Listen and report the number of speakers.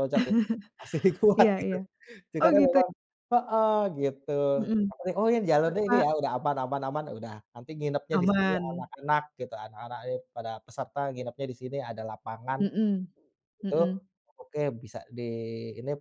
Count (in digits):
2